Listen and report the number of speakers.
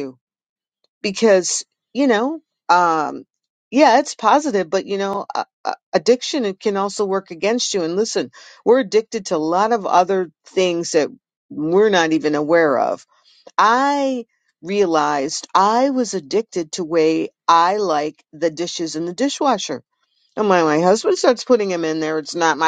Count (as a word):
one